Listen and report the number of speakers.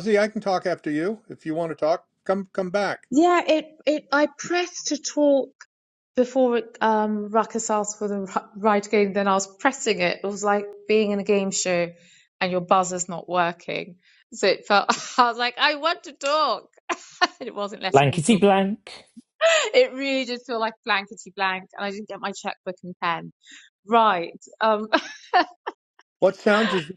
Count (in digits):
3